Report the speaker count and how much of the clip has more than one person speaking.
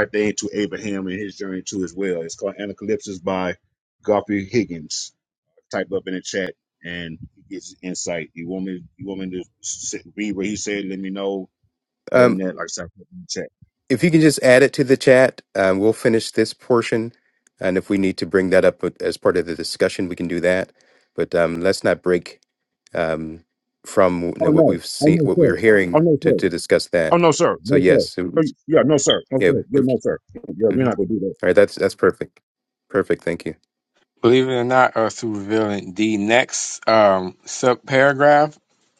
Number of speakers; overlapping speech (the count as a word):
three, about 9%